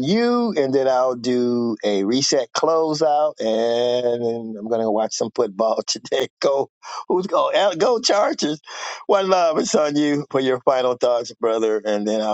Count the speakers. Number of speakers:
one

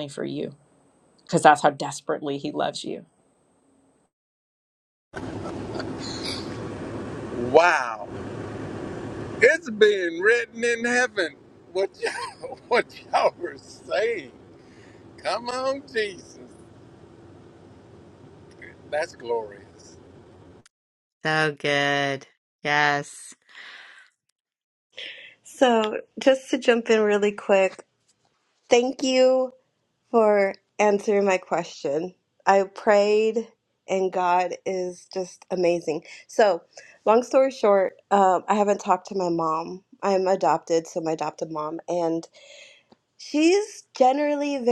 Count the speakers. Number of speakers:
four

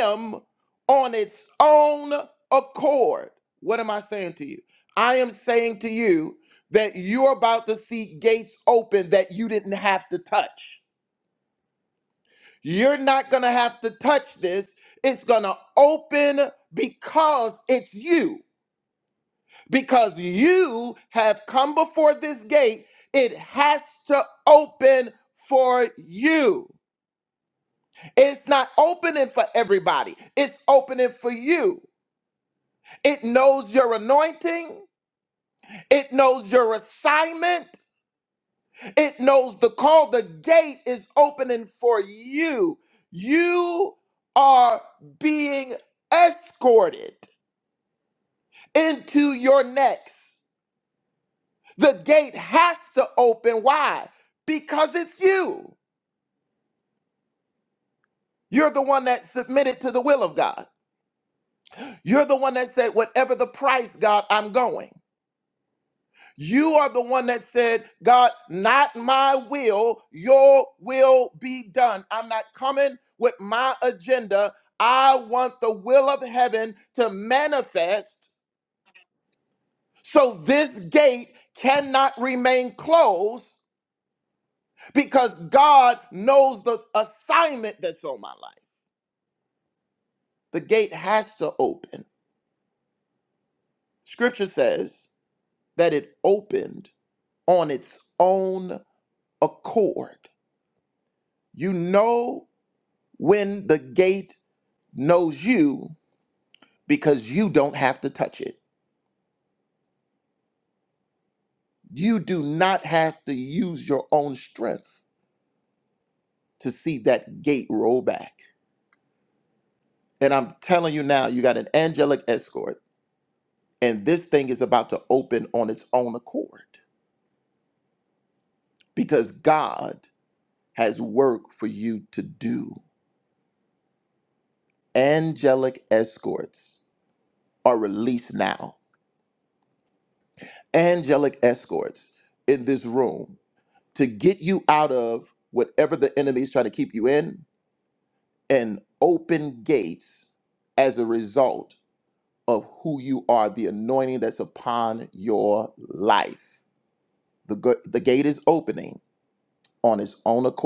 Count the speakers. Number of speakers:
one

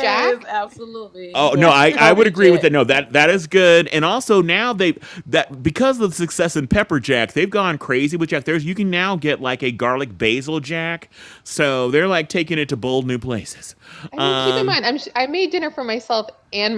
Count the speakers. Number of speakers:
three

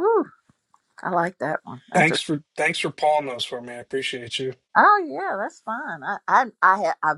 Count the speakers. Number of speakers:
two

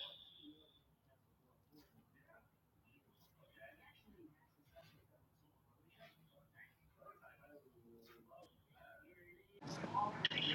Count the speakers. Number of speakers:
zero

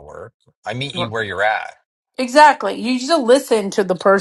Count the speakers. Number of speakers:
two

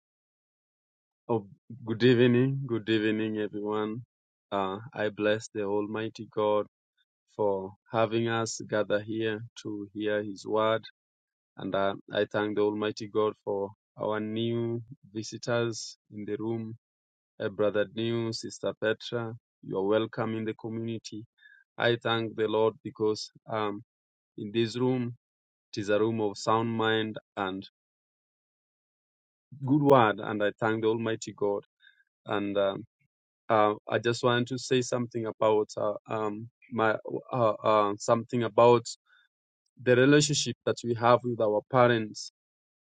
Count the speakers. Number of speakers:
one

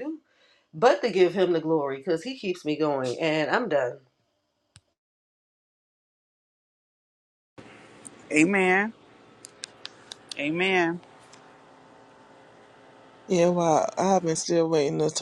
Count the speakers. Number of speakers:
three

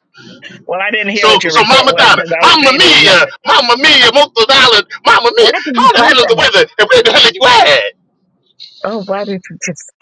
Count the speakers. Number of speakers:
two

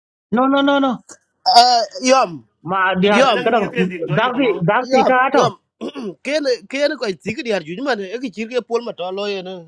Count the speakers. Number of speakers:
three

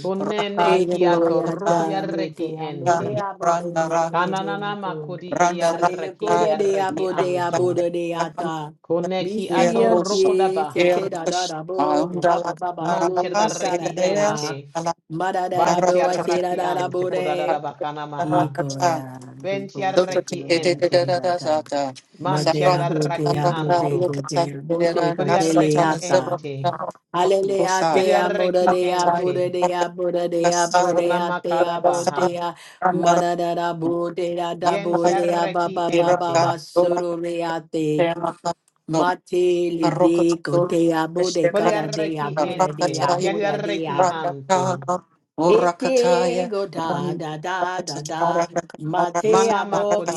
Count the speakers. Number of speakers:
three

